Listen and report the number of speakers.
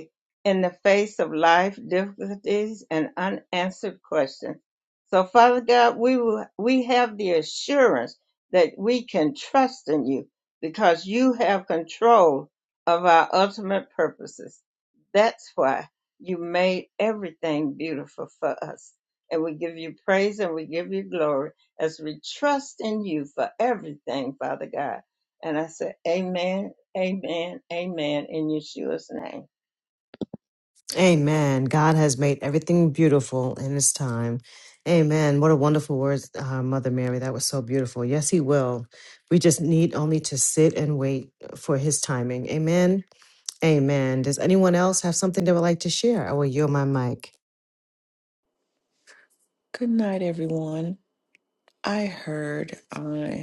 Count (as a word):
three